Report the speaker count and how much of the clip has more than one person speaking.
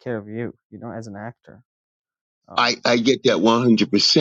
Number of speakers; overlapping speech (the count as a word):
two, about 3%